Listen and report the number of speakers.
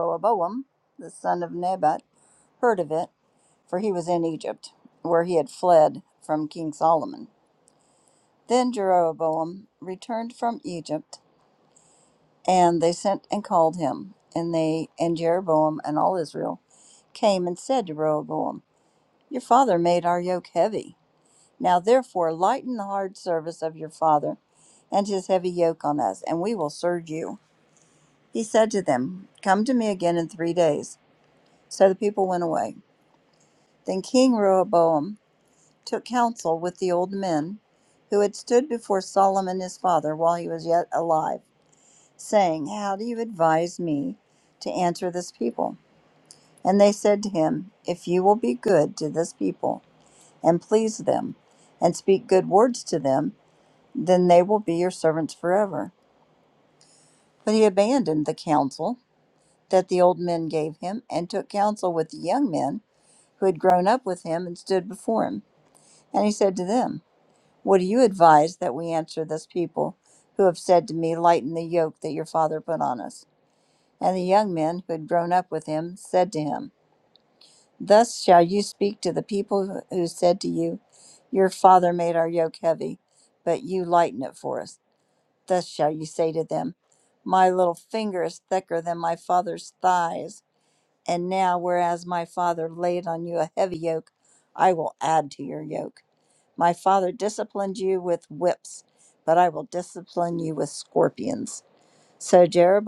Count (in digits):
1